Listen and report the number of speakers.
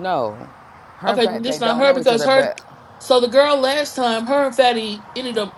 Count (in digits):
2